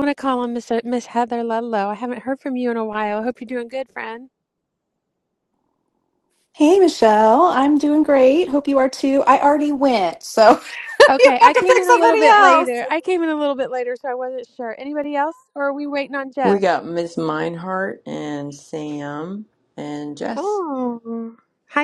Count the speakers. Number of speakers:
3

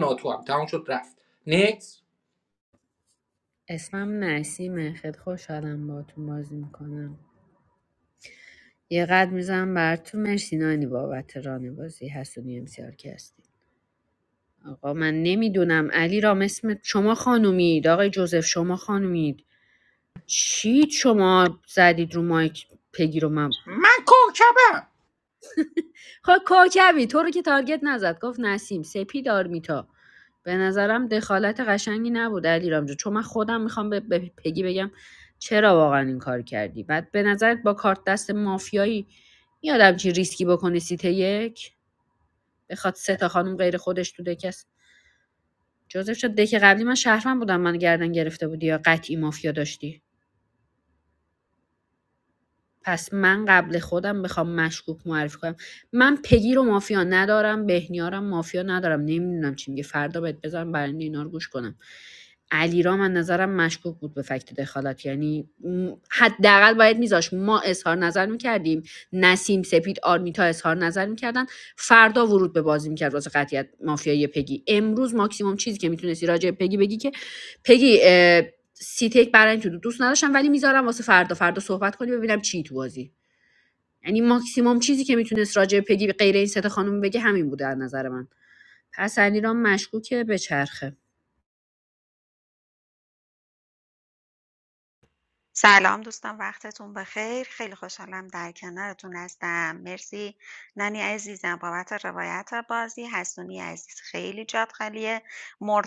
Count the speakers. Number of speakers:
3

